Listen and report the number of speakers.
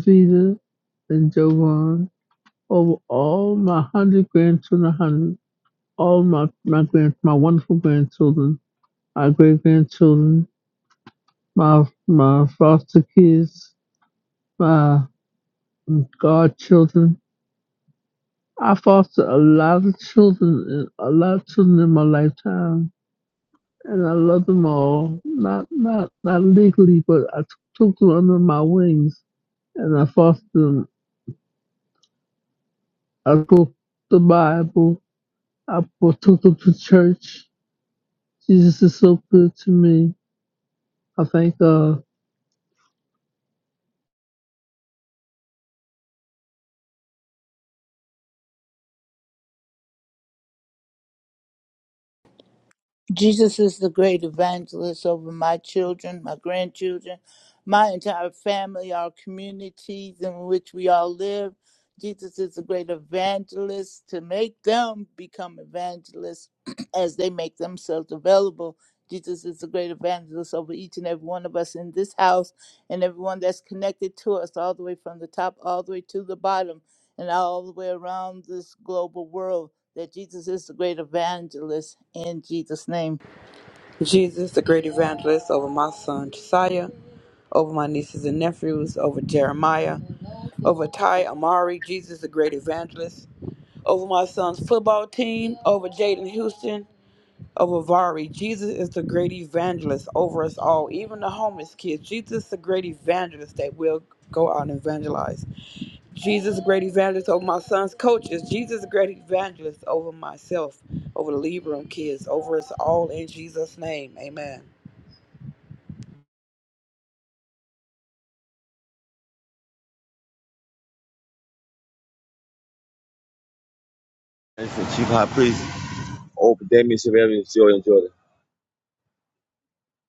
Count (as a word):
four